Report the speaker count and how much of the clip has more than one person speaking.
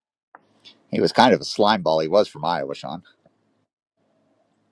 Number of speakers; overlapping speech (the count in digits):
1, no overlap